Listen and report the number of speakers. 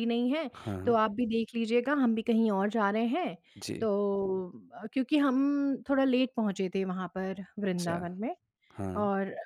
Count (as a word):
two